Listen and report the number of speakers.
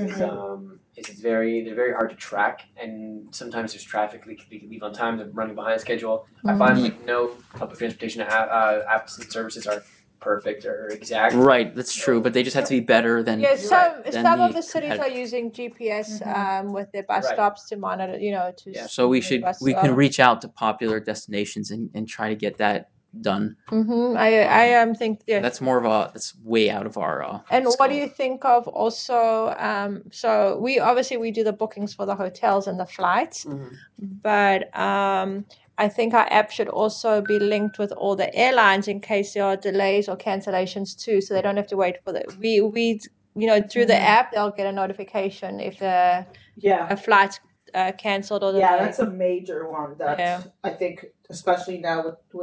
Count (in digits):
4